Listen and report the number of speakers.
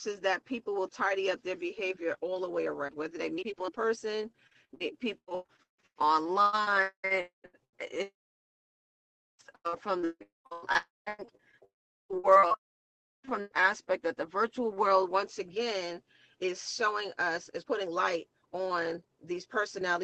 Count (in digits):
1